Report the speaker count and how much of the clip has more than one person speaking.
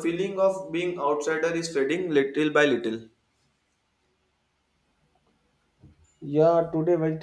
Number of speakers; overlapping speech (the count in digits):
2, no overlap